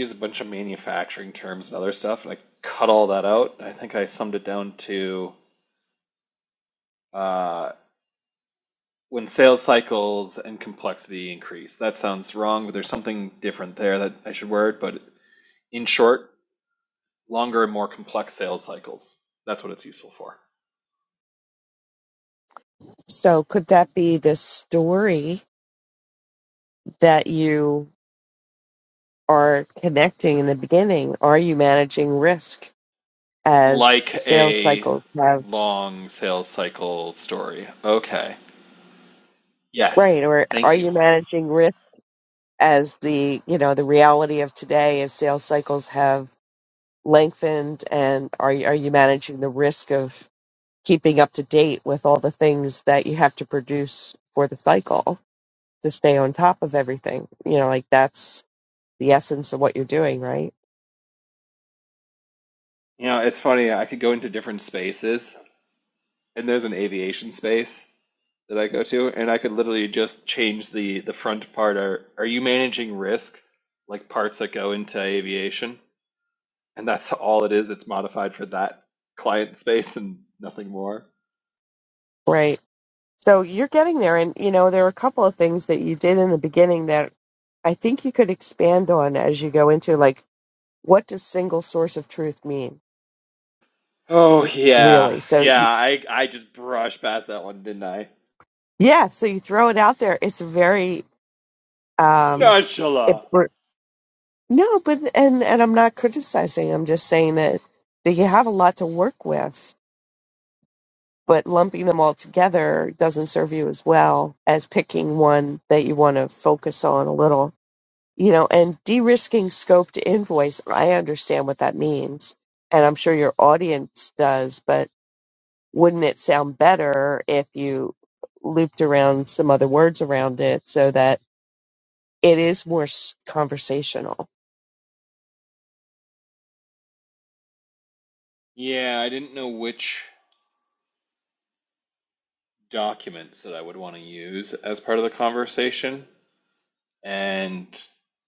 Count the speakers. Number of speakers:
two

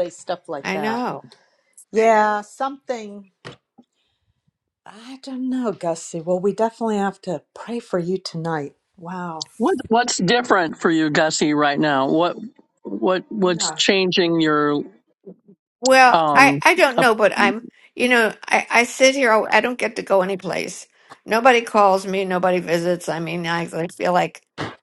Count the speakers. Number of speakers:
three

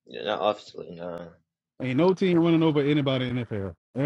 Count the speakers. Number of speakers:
two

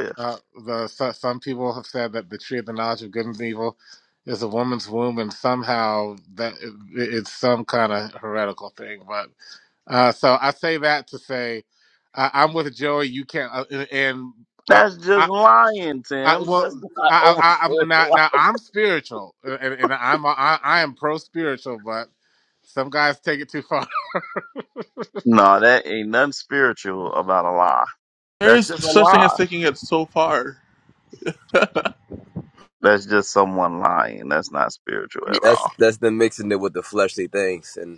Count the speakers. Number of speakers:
four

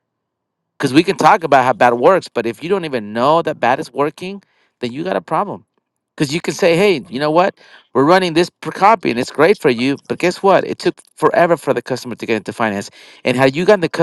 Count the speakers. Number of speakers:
one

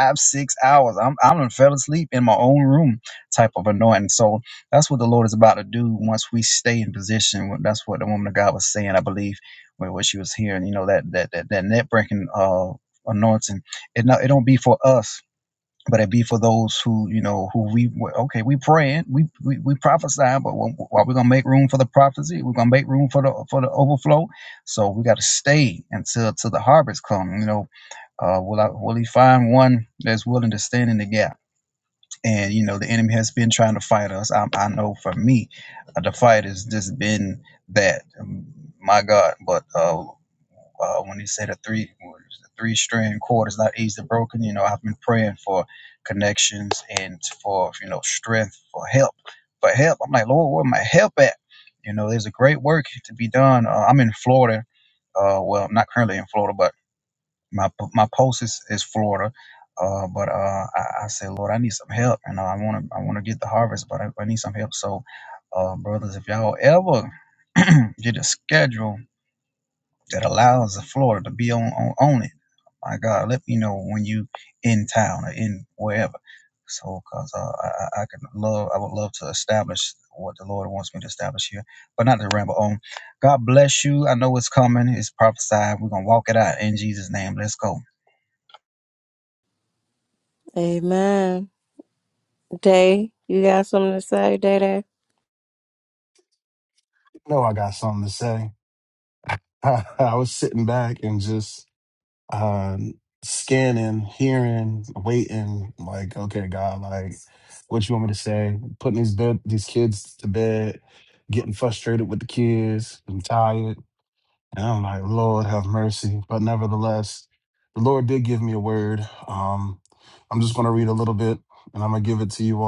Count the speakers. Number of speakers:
three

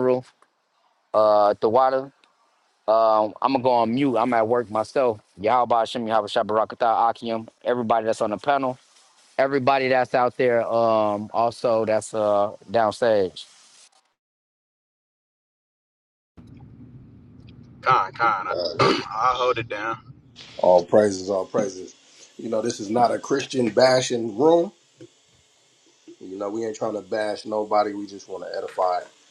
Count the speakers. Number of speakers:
three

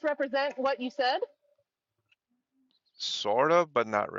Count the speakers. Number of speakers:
two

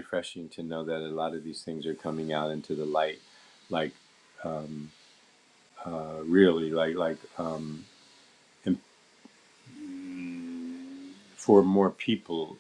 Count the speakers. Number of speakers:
one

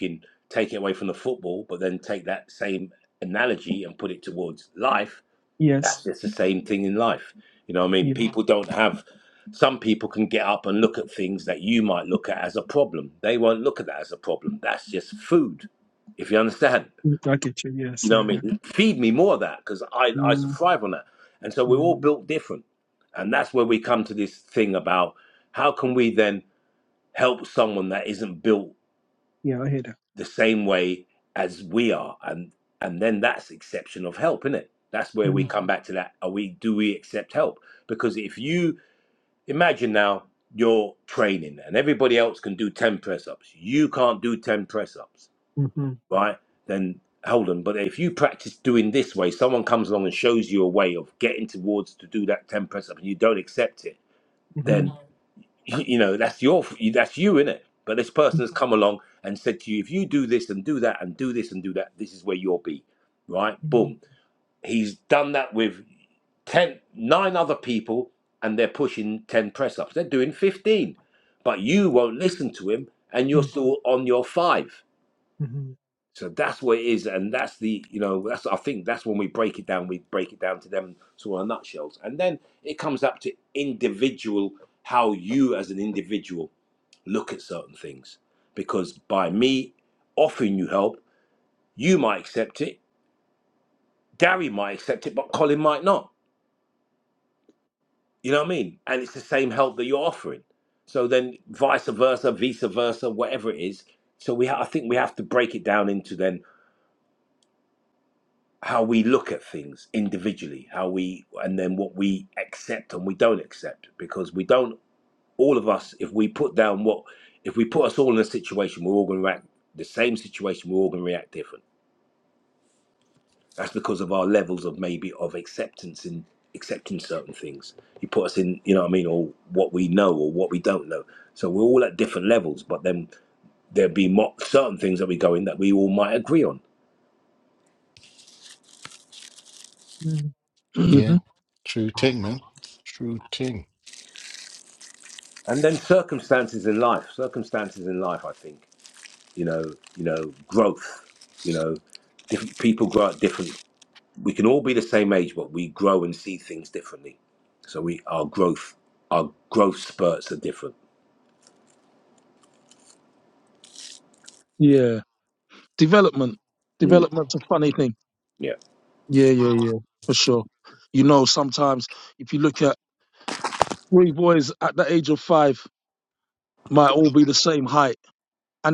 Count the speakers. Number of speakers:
four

